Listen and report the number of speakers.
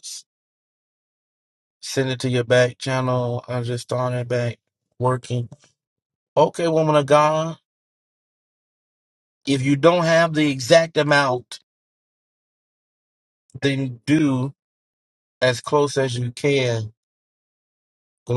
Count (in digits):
1